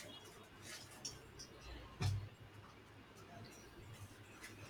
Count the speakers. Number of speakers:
0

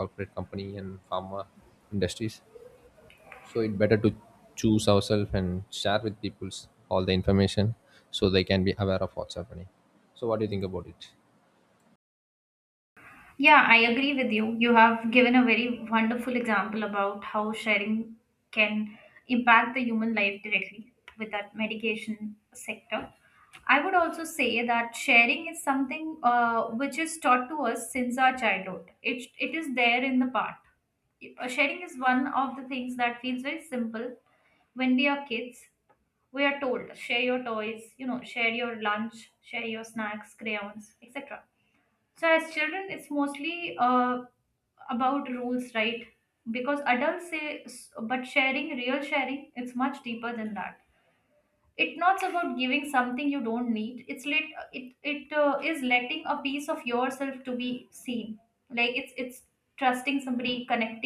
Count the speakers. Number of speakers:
2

